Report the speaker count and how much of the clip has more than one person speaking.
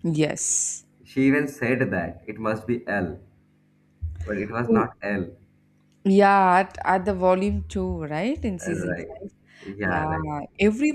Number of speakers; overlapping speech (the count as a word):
two, about 9%